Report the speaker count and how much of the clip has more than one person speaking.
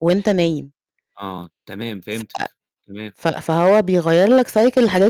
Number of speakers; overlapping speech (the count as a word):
two, about 1%